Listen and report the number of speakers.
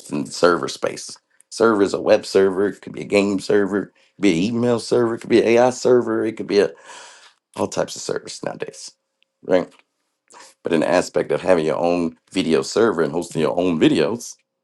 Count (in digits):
1